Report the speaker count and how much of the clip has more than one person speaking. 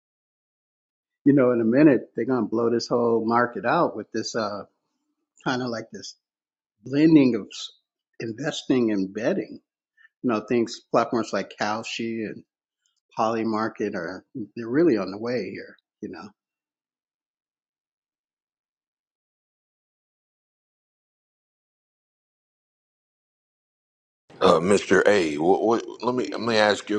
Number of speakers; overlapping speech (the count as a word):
two, no overlap